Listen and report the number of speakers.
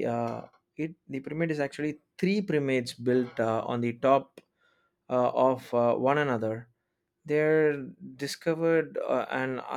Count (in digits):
1